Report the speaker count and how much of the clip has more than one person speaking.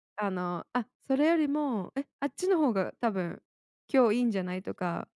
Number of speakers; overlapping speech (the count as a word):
one, no overlap